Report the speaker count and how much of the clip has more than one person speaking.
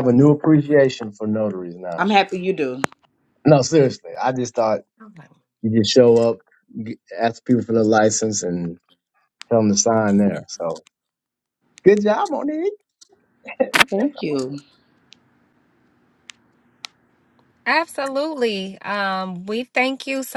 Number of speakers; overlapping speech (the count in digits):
3, about 2%